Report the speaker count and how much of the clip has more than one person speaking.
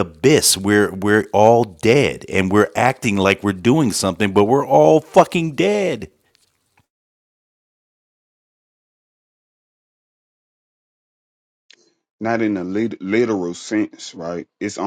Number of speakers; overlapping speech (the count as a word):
two, no overlap